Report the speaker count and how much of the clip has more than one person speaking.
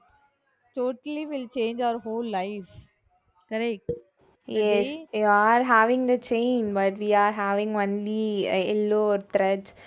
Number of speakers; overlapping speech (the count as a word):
two, about 4%